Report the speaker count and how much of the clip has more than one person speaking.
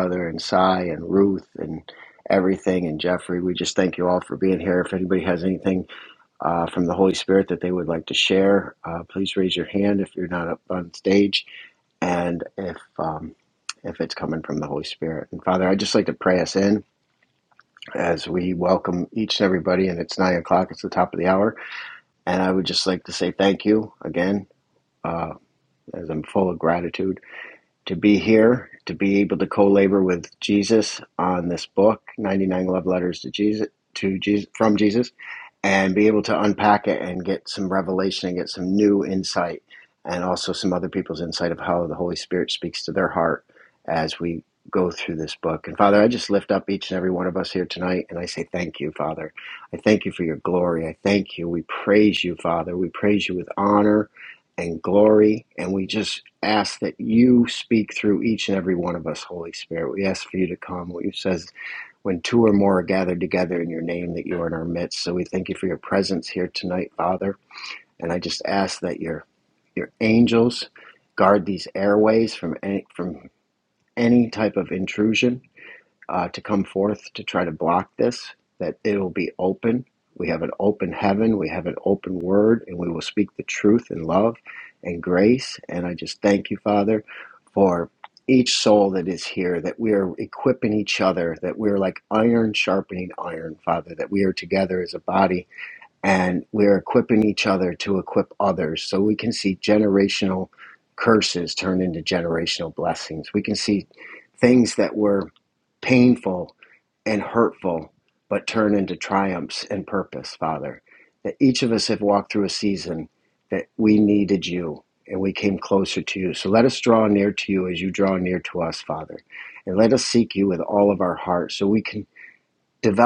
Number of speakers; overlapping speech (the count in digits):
1, no overlap